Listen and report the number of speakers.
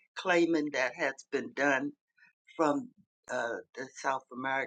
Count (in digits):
1